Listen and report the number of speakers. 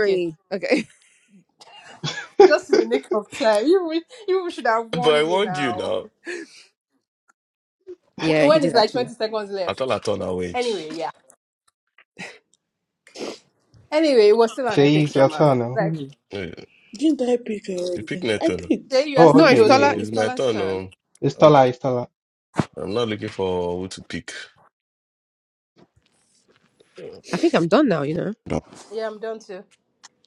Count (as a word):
five